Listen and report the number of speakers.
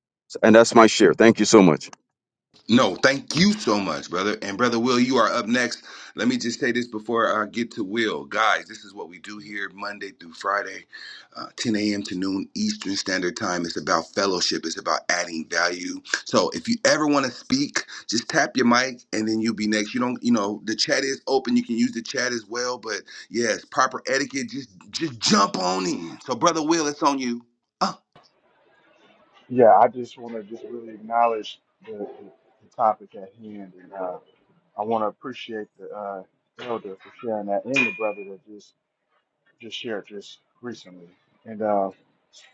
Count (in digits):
3